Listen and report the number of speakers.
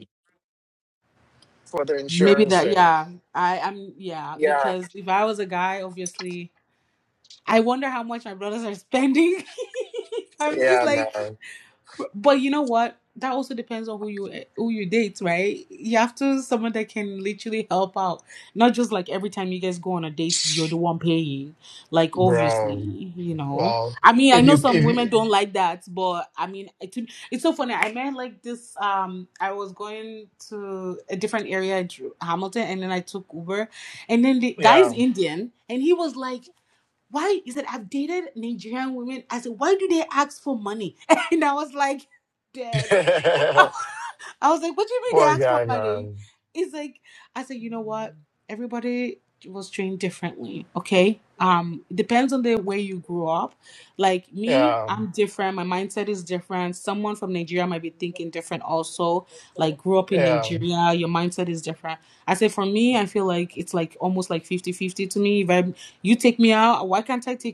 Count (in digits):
2